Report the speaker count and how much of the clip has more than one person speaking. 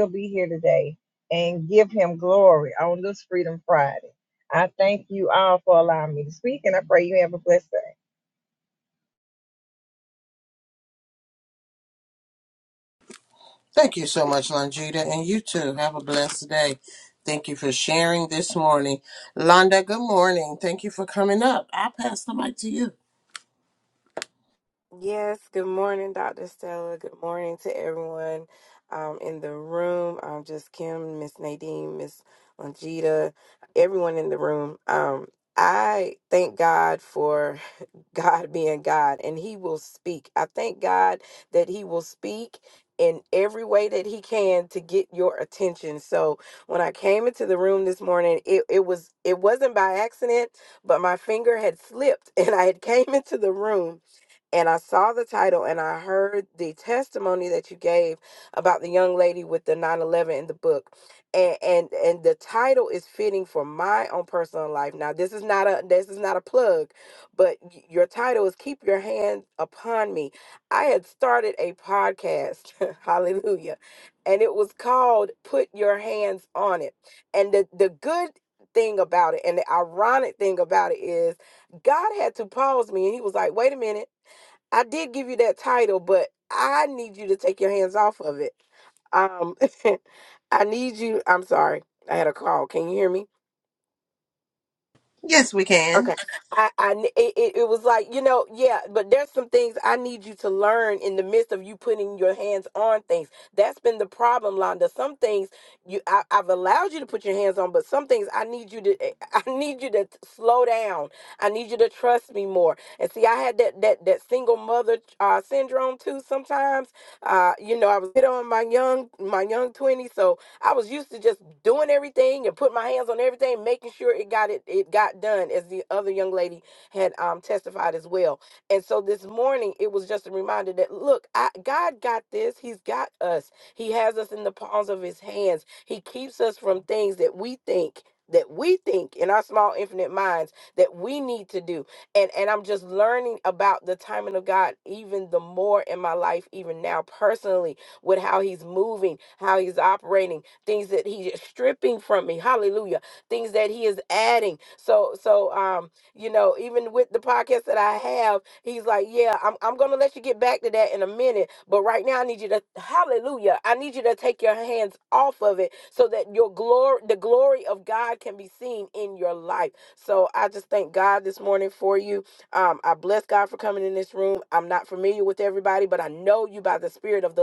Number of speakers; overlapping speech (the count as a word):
three, under 1%